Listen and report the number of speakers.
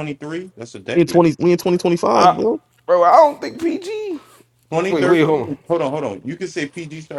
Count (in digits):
3